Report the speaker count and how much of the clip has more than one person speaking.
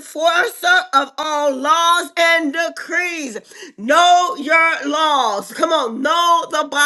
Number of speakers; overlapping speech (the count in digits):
1, no overlap